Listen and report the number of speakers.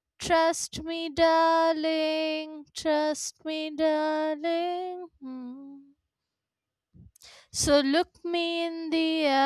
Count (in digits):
1